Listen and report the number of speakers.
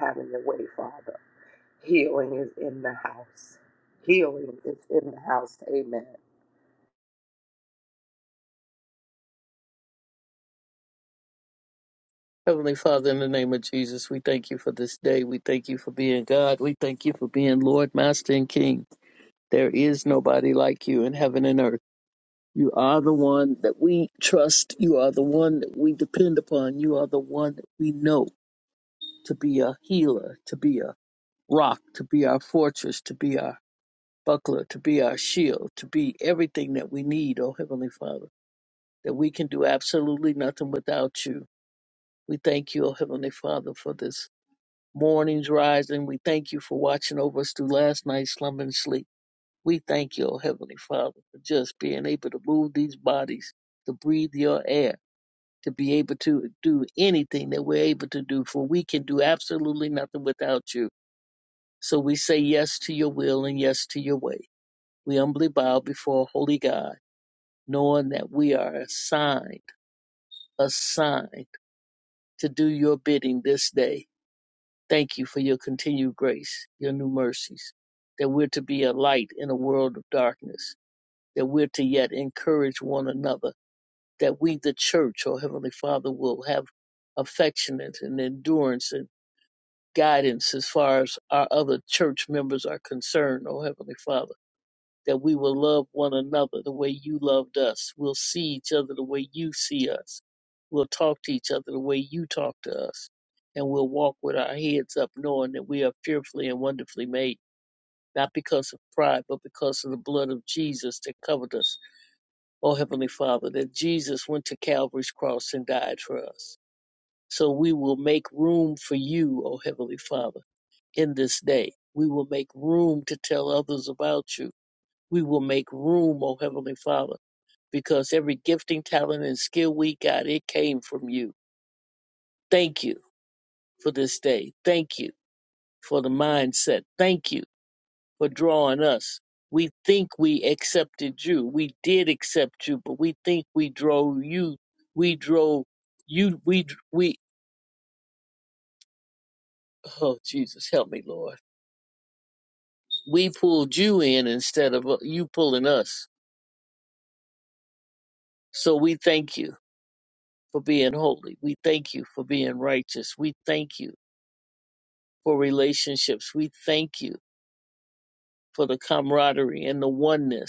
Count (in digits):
2